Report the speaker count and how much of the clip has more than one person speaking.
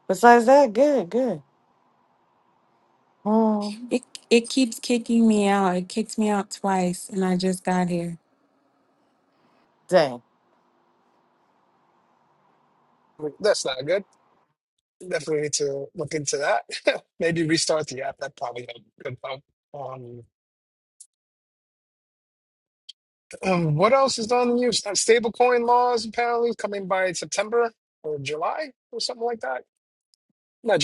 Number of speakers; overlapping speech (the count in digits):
3, no overlap